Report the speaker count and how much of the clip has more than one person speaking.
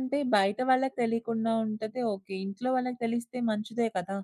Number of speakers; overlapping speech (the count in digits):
1, no overlap